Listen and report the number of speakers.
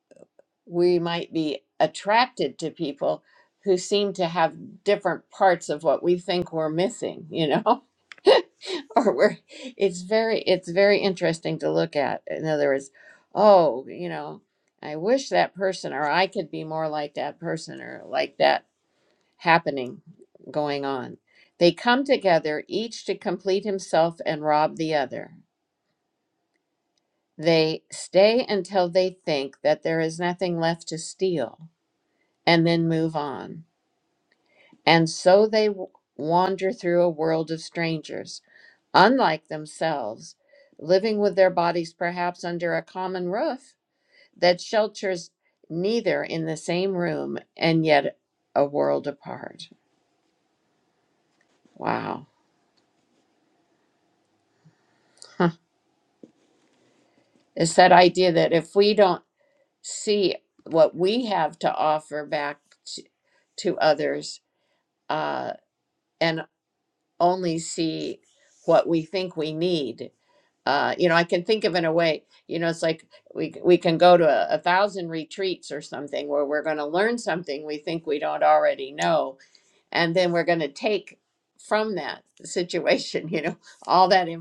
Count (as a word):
one